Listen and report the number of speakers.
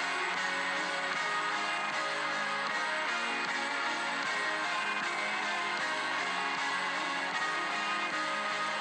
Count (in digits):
0